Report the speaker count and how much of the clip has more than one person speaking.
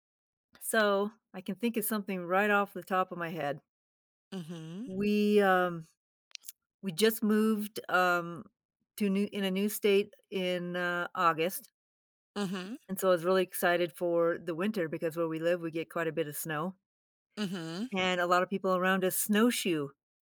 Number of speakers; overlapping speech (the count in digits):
2, under 1%